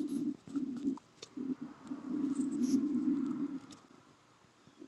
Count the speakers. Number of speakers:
zero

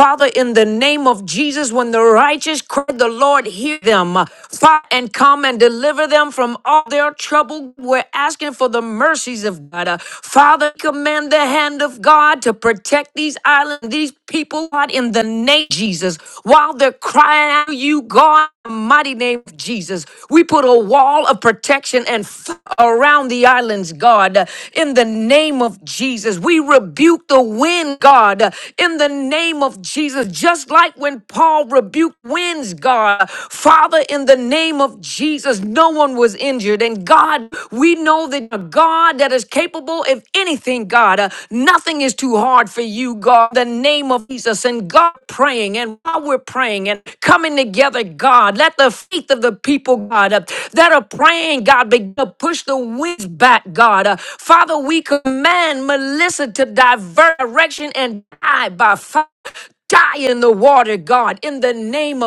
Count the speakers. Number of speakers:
one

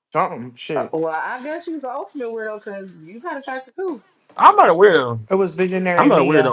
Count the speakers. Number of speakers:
three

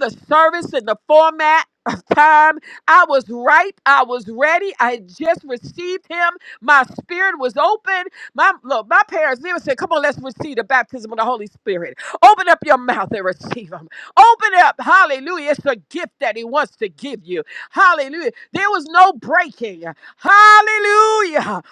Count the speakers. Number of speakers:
one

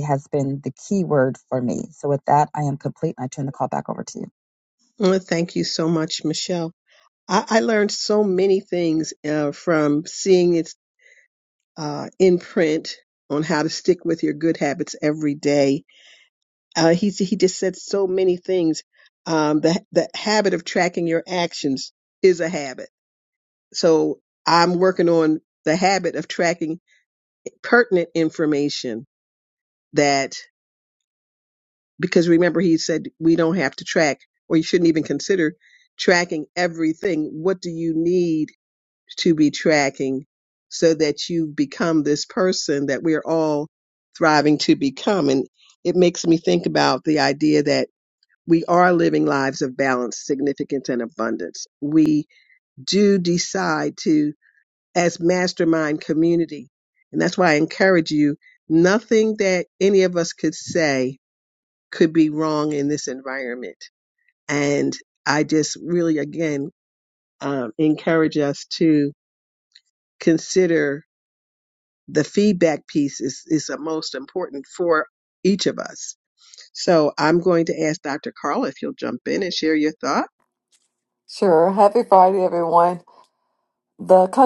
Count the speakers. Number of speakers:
three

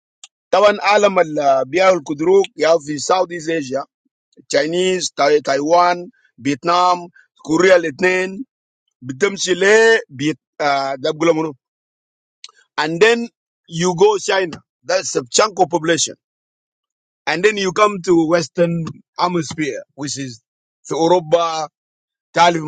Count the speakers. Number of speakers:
one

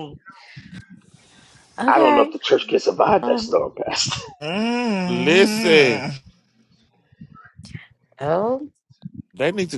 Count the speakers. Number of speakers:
four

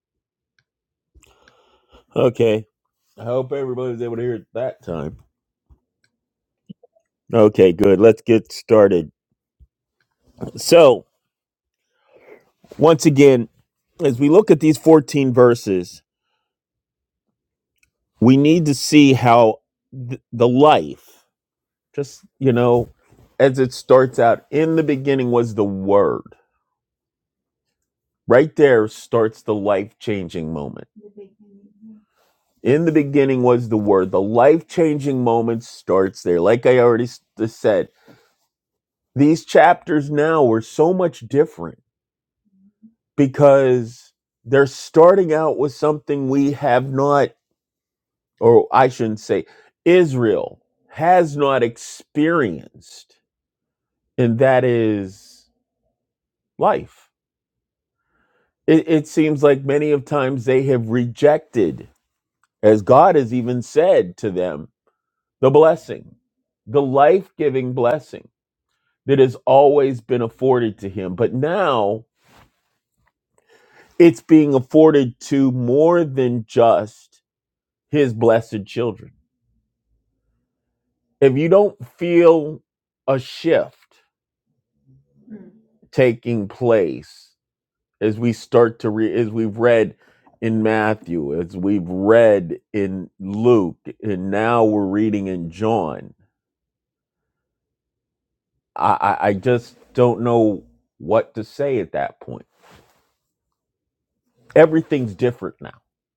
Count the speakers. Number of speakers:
one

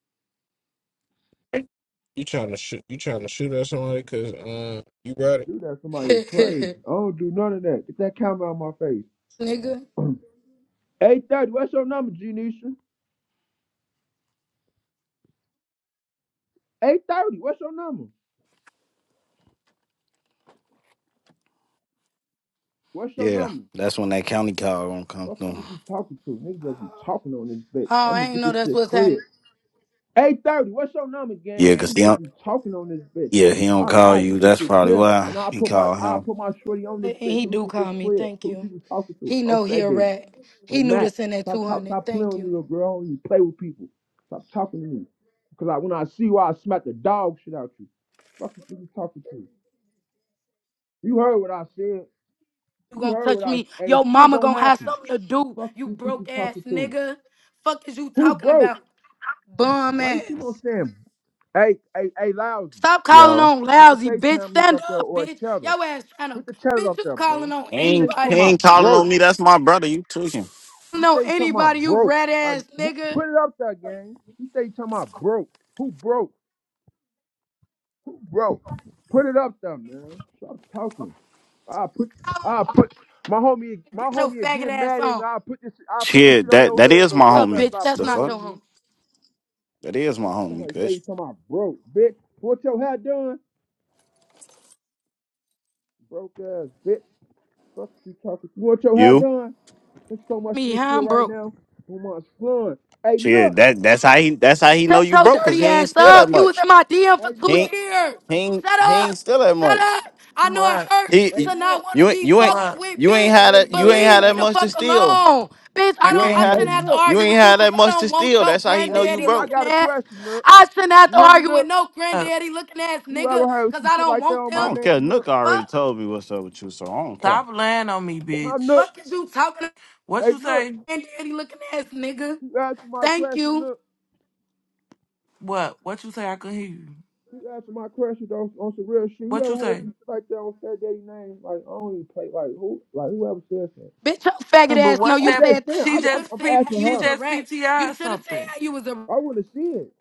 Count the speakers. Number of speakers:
five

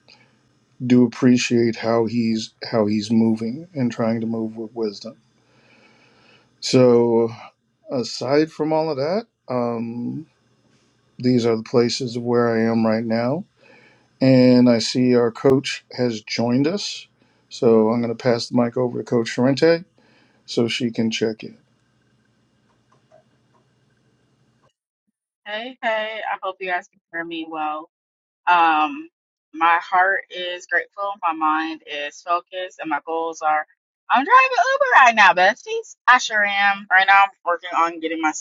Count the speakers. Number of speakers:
two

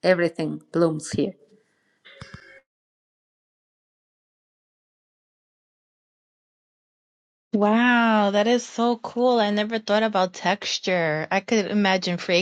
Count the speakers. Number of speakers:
two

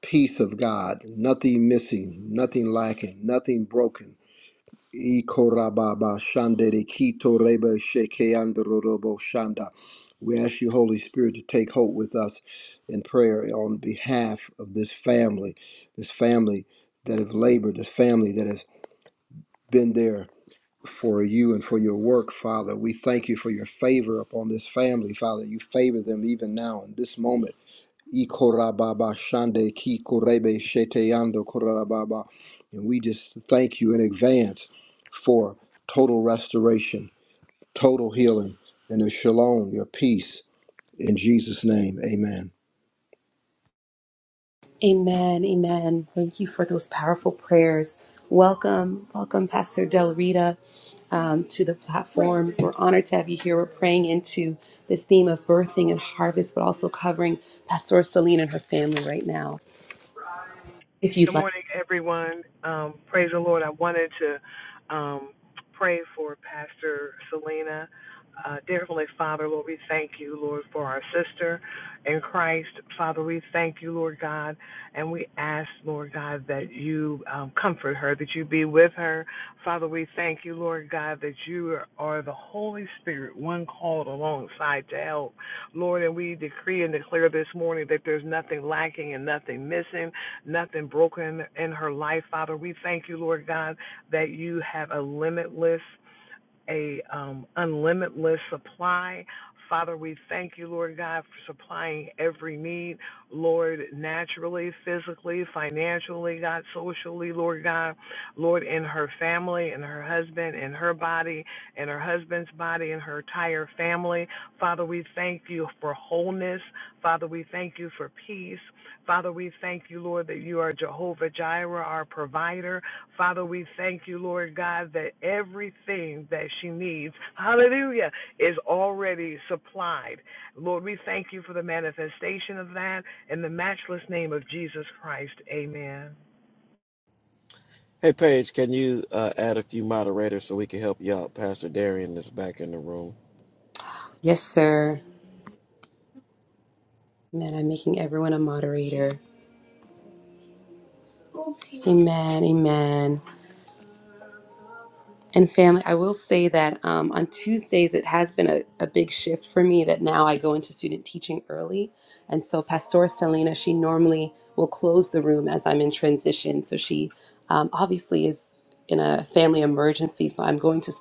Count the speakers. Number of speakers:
four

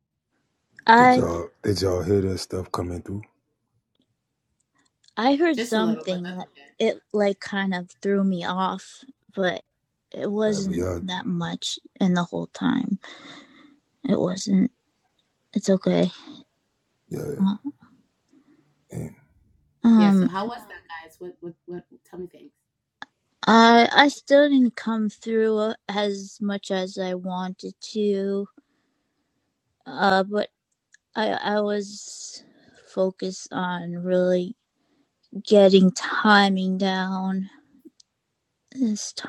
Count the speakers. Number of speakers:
three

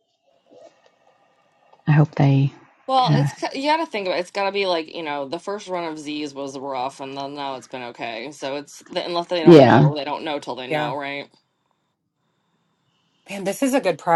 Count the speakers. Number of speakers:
three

